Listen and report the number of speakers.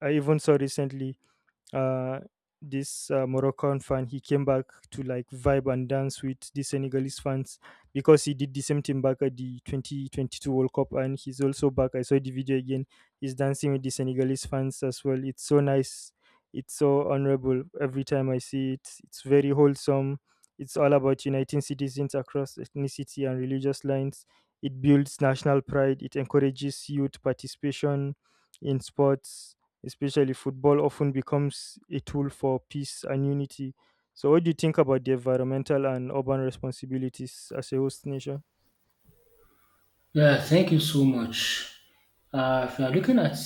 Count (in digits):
2